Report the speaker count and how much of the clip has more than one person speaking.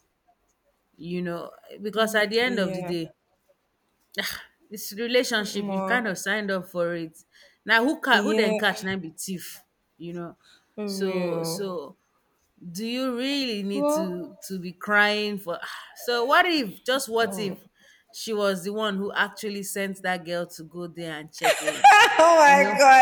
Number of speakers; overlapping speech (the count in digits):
2, about 16%